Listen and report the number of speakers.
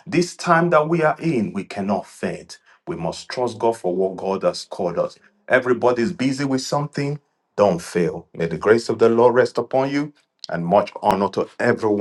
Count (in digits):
1